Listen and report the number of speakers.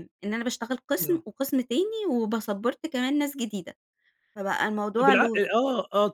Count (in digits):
2